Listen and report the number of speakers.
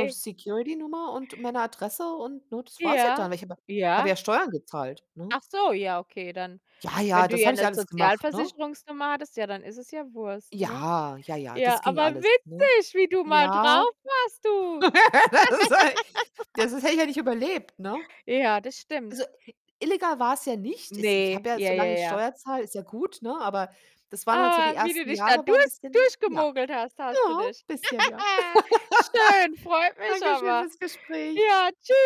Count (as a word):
two